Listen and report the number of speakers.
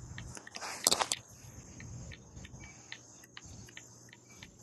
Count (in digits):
0